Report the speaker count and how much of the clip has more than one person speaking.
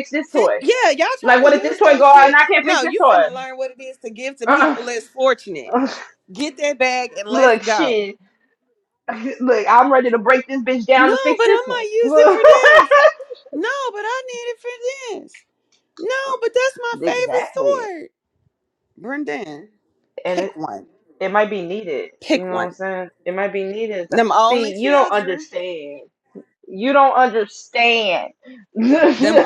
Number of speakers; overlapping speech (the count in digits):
2, about 26%